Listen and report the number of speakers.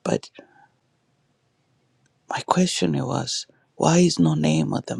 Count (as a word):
one